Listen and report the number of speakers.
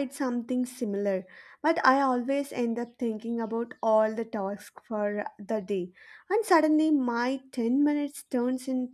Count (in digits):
1